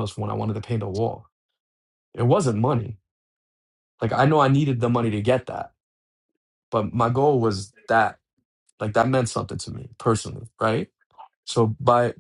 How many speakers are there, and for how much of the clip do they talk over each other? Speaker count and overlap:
1, no overlap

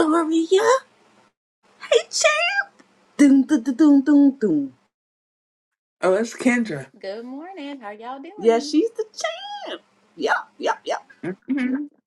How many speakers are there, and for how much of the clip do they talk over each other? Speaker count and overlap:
3, about 3%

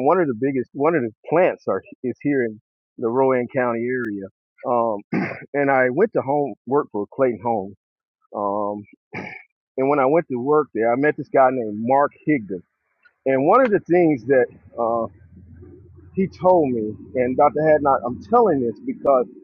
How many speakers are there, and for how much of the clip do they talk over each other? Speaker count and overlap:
1, no overlap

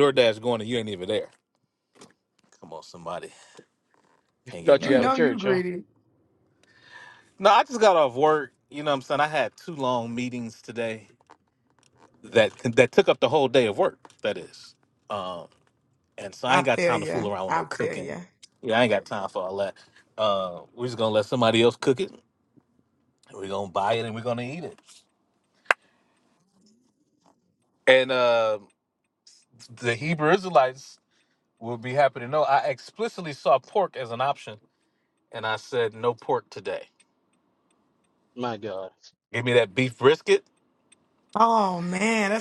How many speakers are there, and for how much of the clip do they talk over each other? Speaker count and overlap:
3, about 6%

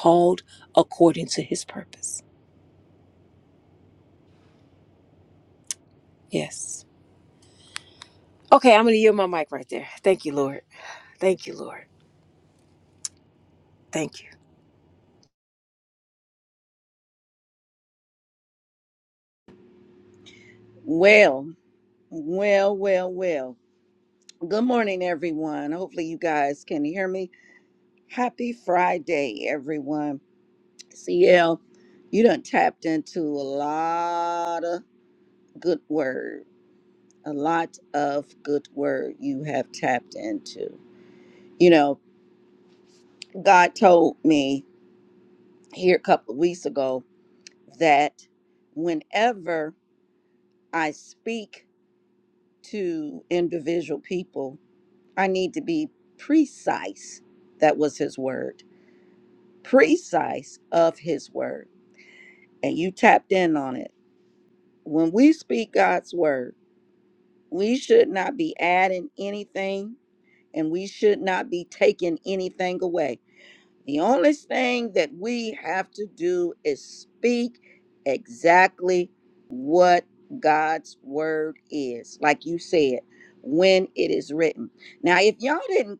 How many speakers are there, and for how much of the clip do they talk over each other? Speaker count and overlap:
2, no overlap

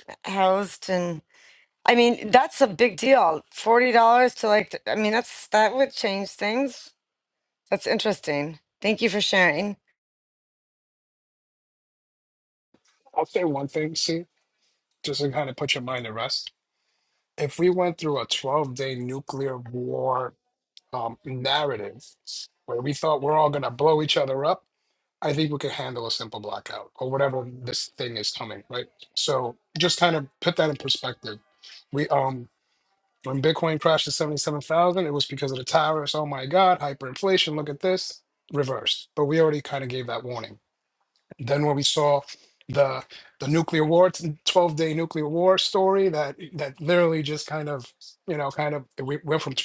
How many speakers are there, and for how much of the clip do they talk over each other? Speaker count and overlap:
2, no overlap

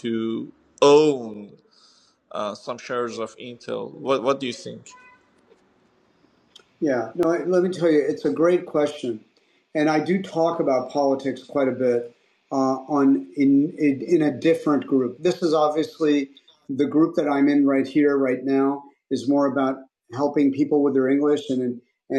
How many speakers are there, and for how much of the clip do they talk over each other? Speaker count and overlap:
2, no overlap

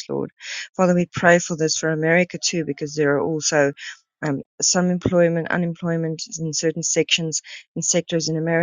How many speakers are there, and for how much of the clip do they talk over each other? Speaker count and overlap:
1, no overlap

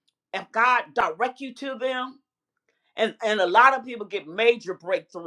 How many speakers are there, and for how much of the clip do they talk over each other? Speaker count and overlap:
1, no overlap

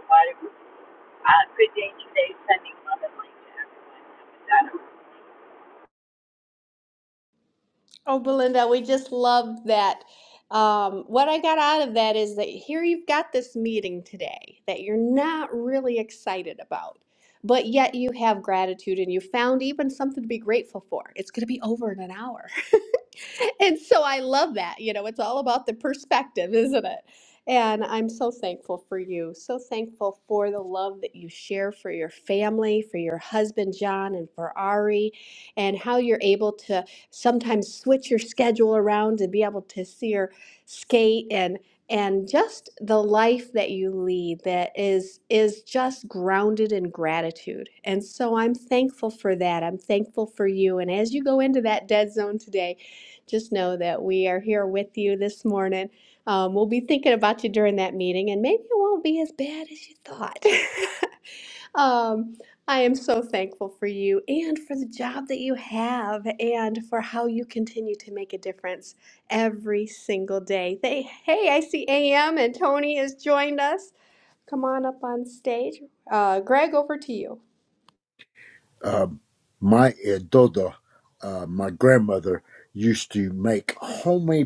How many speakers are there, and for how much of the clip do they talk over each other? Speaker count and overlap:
3, no overlap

